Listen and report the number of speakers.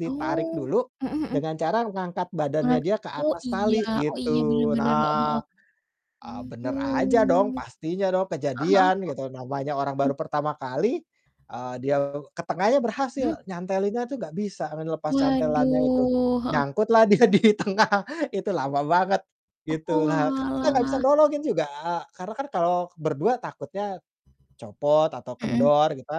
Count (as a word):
two